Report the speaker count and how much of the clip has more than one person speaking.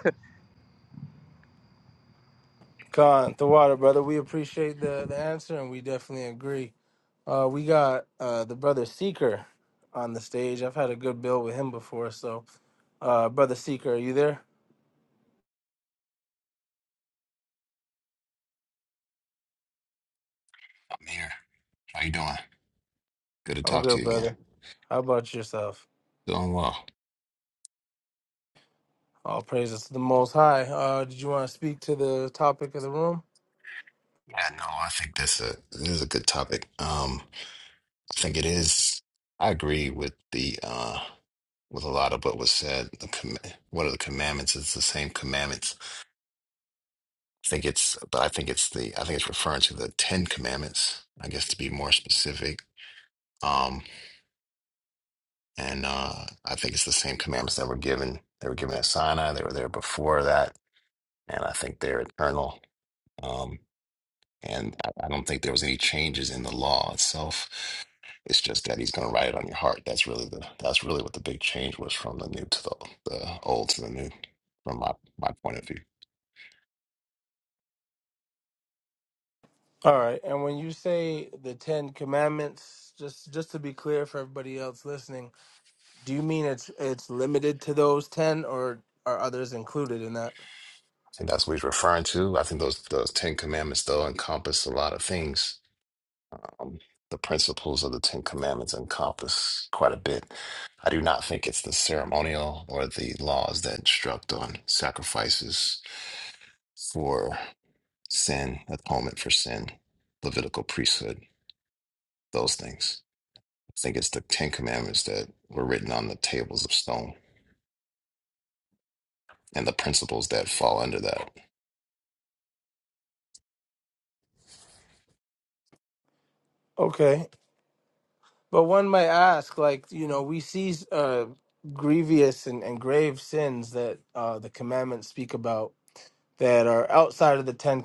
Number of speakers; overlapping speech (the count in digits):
2, under 1%